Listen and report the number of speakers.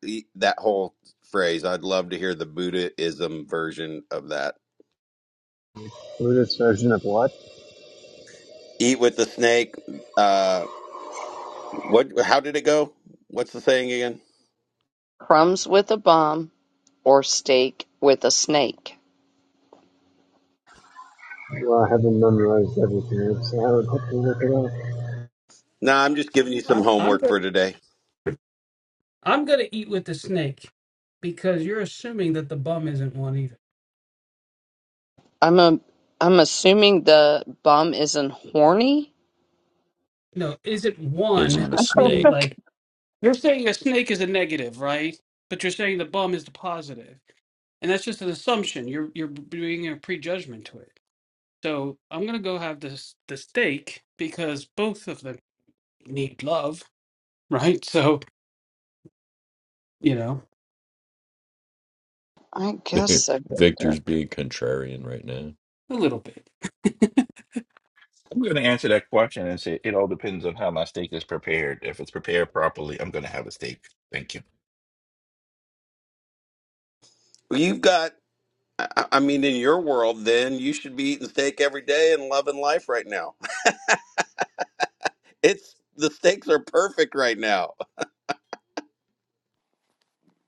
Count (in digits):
6